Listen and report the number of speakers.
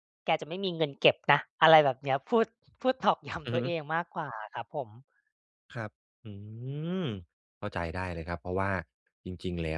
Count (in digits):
2